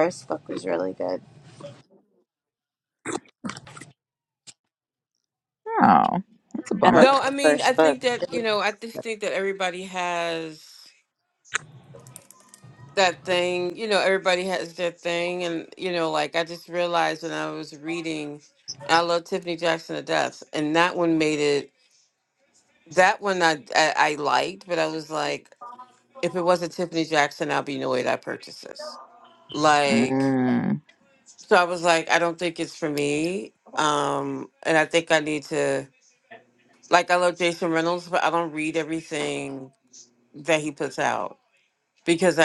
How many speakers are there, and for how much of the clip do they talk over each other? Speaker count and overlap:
3, about 4%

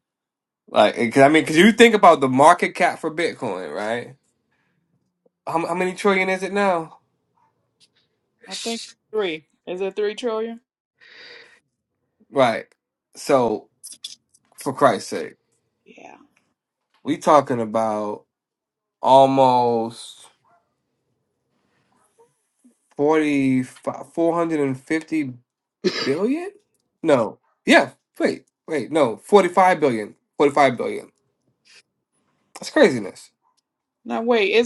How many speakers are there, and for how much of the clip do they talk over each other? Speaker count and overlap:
2, no overlap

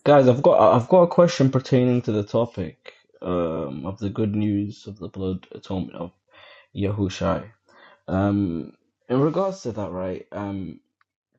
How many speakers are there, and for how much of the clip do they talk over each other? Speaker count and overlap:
1, no overlap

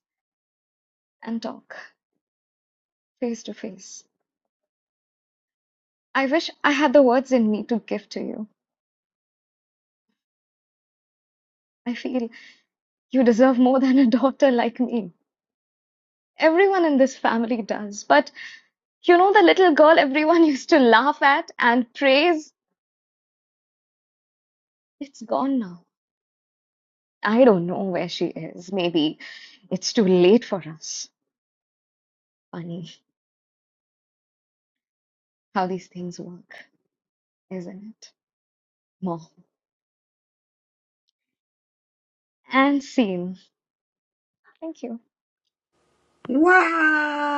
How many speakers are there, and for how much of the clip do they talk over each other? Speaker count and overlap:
2, no overlap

